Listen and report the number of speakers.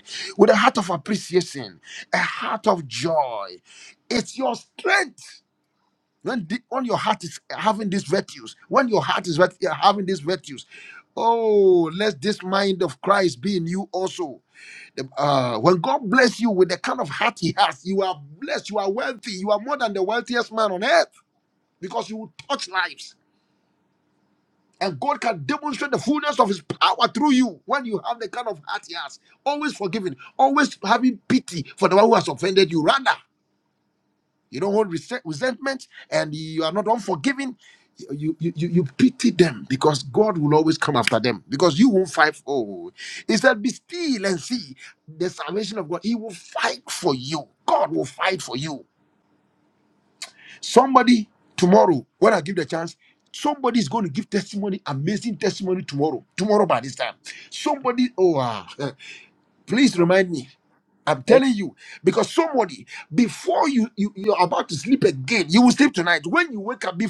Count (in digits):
1